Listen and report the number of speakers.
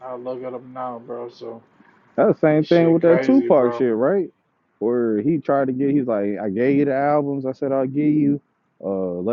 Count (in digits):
2